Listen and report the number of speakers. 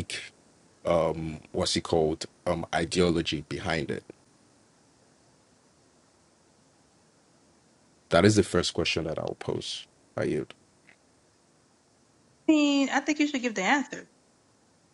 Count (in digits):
2